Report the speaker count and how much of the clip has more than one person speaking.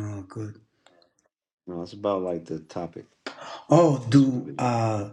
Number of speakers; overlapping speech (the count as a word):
two, about 12%